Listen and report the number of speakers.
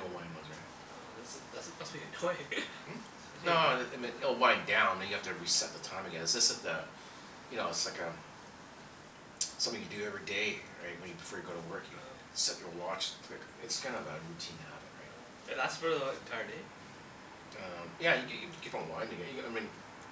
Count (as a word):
two